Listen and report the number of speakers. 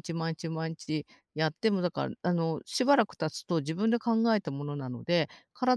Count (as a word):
one